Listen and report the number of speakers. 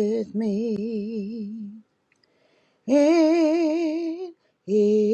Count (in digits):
1